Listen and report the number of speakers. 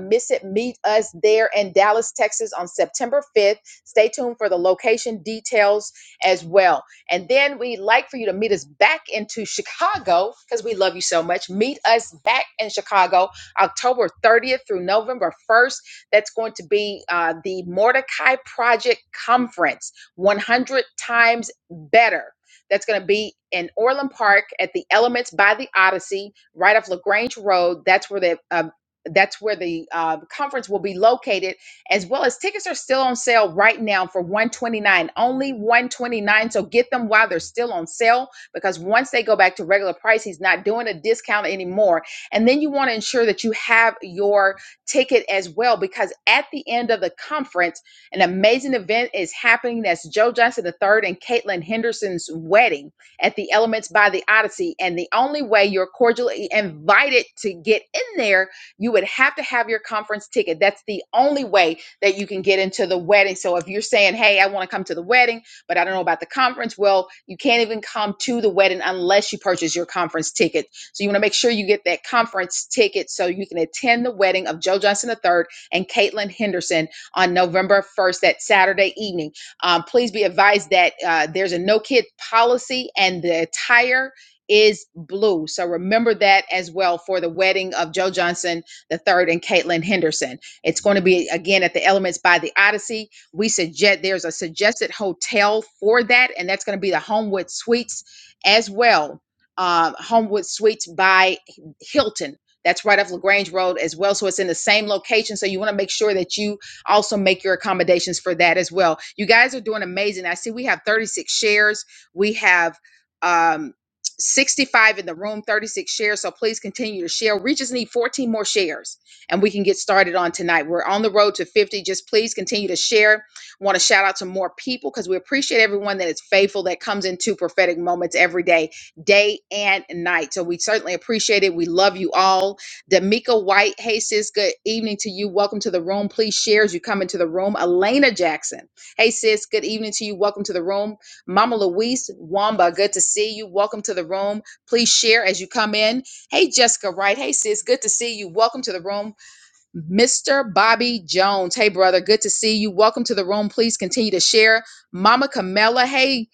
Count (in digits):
1